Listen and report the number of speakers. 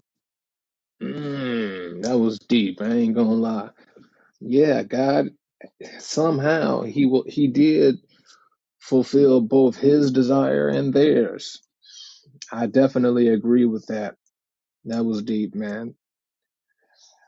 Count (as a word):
one